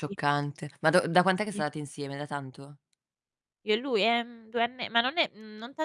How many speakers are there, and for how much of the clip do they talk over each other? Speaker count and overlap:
two, about 3%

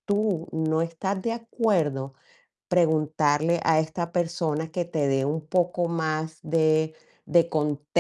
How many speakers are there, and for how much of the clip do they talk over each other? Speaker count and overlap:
one, no overlap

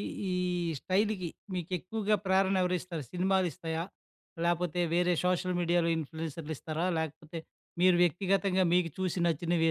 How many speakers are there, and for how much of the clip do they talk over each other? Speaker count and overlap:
one, no overlap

